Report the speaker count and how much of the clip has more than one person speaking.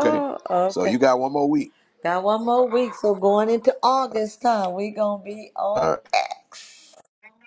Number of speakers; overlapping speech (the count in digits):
2, about 11%